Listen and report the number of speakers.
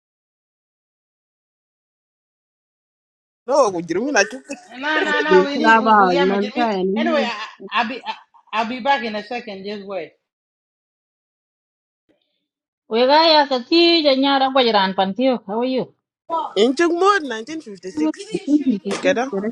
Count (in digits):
4